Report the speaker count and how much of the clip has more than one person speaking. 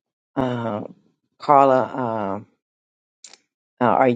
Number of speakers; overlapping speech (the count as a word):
one, no overlap